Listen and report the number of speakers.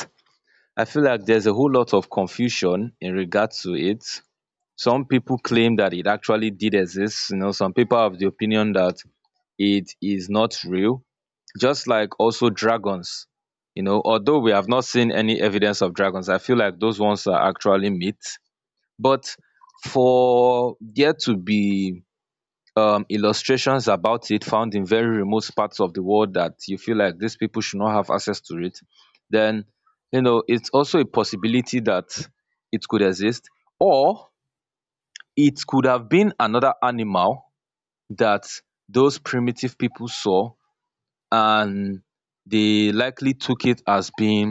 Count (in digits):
1